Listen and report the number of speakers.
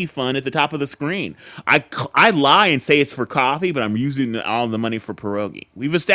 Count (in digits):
1